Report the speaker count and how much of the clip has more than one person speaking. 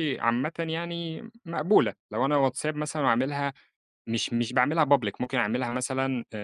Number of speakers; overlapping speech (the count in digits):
1, no overlap